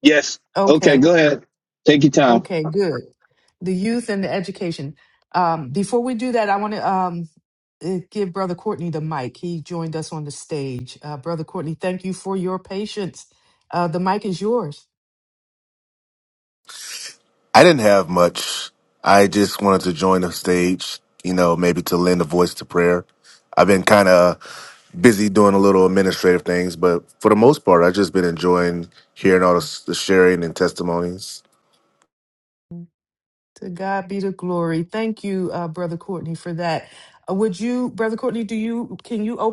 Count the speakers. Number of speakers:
3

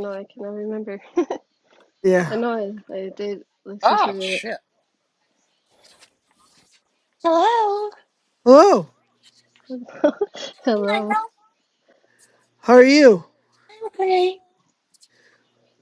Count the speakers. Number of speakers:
3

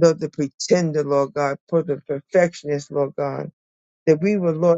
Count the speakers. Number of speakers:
1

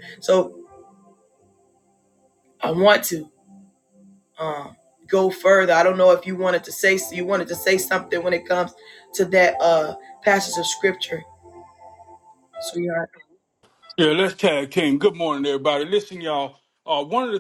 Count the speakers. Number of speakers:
2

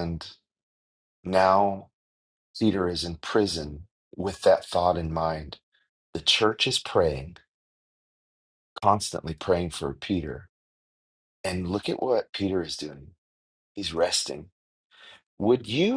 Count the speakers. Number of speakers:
1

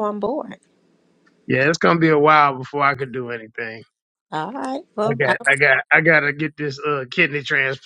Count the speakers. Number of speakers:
2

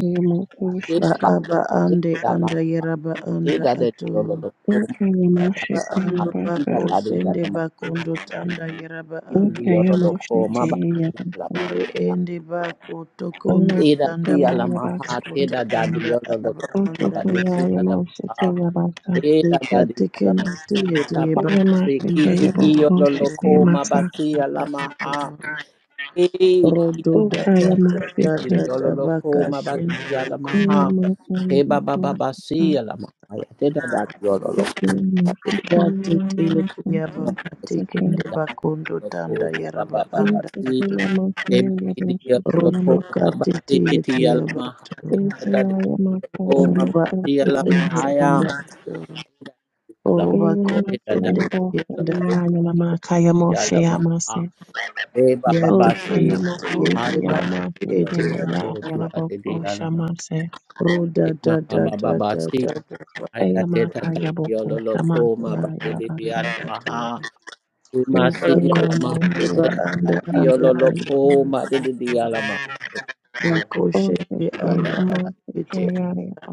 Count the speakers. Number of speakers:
3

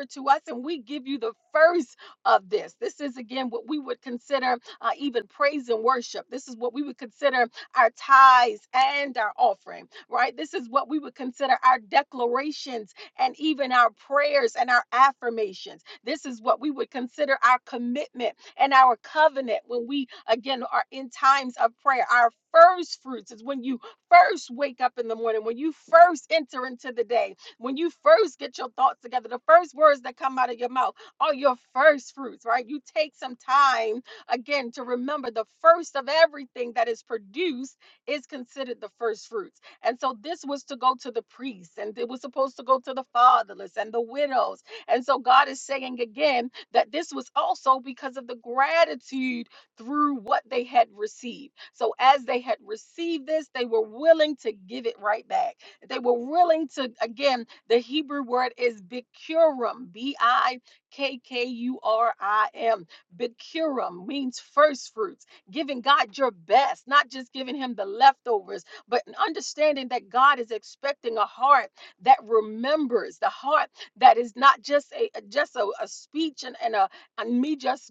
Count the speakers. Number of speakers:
1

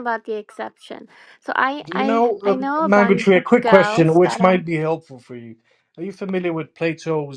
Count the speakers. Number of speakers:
2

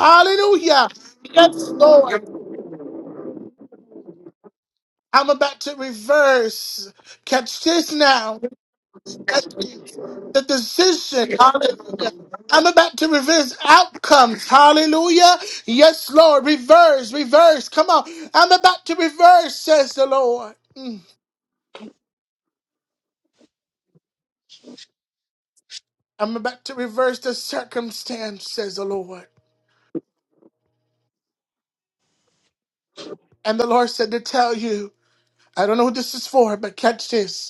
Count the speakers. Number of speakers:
1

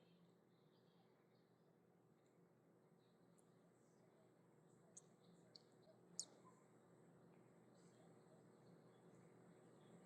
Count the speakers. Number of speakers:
0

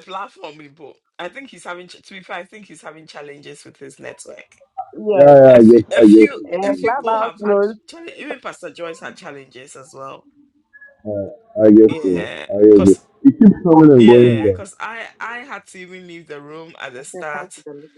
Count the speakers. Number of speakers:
3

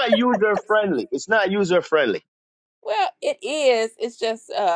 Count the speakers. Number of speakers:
2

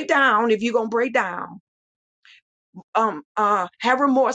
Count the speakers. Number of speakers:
1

